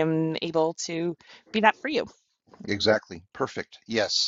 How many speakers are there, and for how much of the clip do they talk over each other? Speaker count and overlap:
2, no overlap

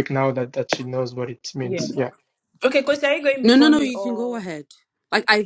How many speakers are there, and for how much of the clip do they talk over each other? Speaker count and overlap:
3, about 22%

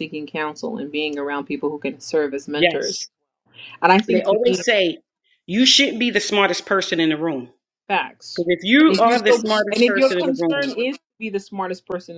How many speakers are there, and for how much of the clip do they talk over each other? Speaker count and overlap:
2, about 23%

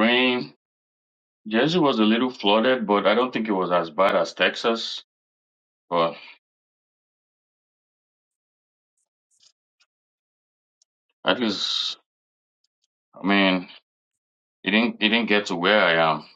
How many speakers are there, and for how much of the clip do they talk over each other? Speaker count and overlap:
1, no overlap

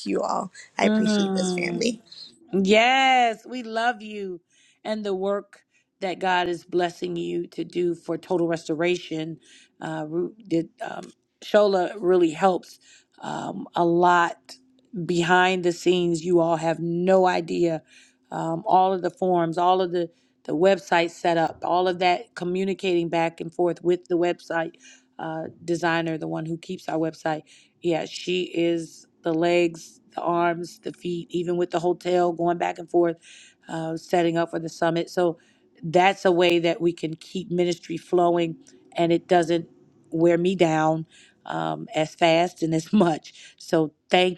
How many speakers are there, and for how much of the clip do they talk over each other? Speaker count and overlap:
2, about 2%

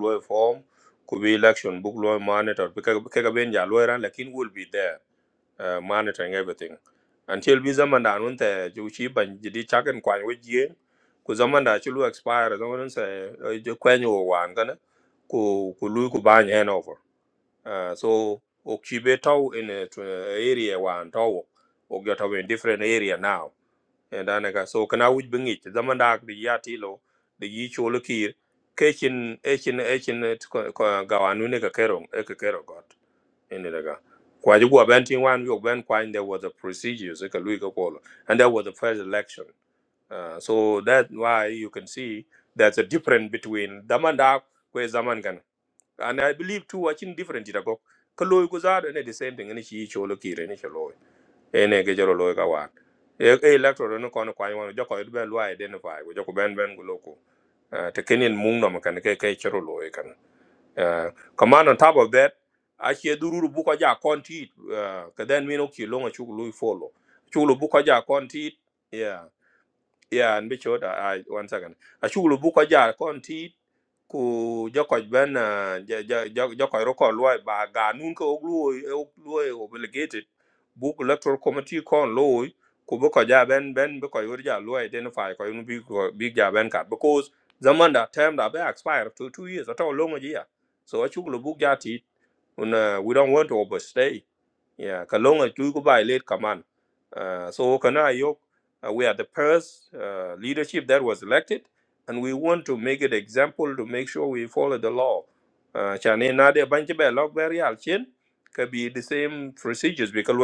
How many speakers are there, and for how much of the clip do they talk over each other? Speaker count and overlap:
1, no overlap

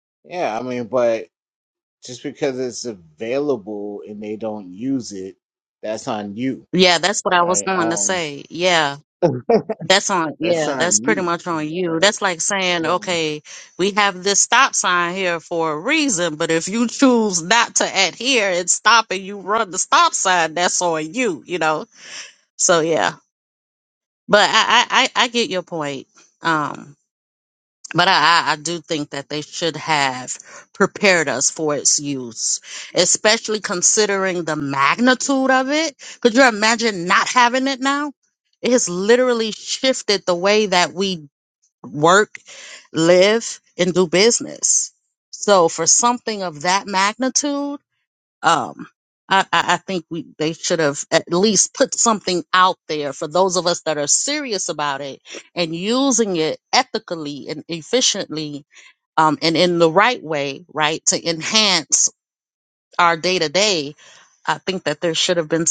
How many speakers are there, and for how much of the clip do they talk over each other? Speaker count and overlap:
2, about 3%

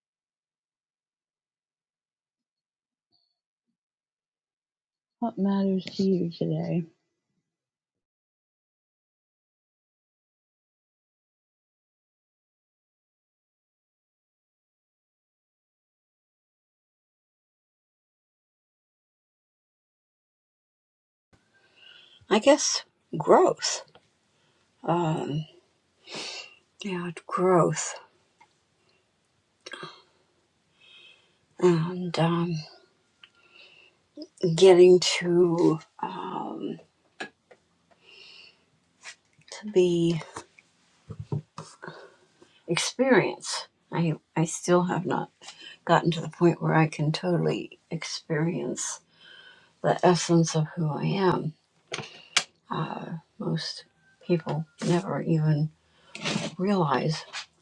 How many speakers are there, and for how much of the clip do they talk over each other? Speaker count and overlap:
2, no overlap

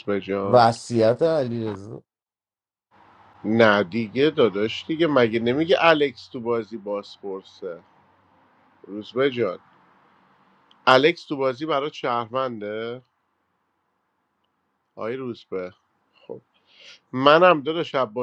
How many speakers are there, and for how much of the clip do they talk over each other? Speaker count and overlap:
2, about 1%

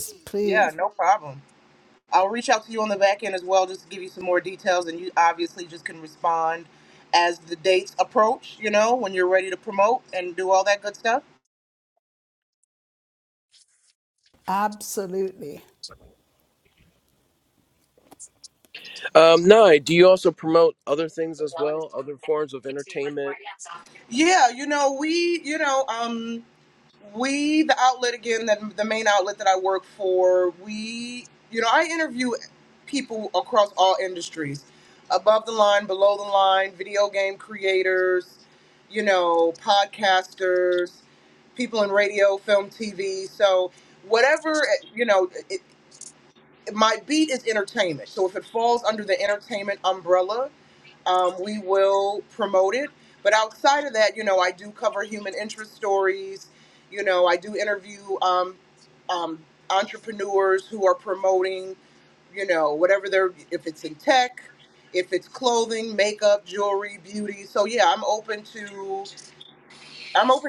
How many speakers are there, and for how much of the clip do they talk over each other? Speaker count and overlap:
3, under 1%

